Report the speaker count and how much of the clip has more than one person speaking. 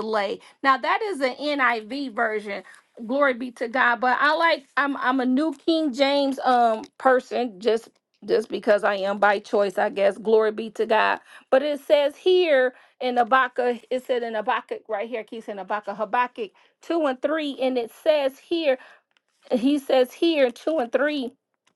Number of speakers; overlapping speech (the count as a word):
one, no overlap